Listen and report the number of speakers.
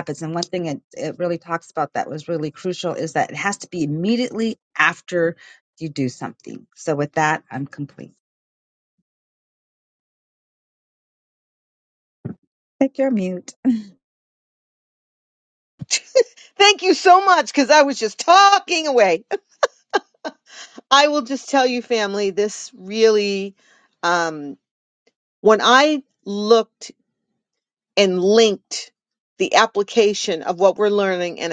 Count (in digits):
2